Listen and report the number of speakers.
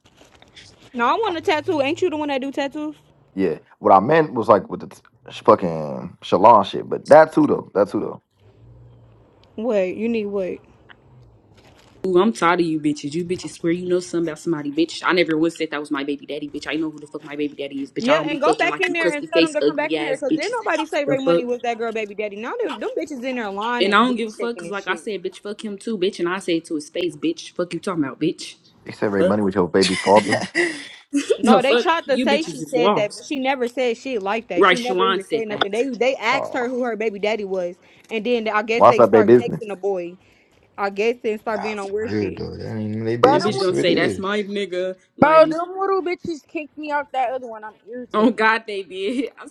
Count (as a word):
five